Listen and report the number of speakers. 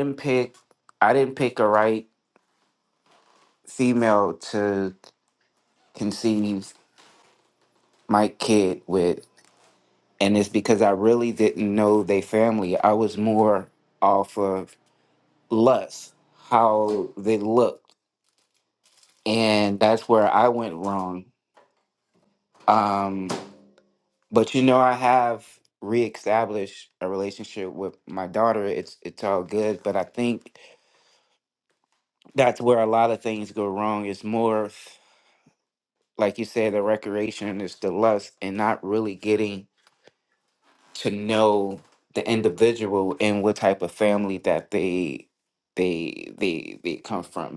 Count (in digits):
1